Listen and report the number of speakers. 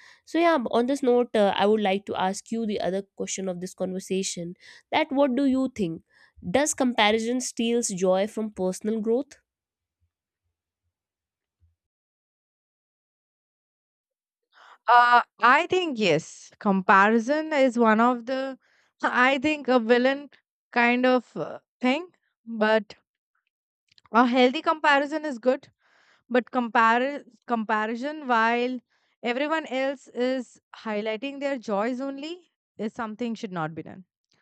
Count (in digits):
2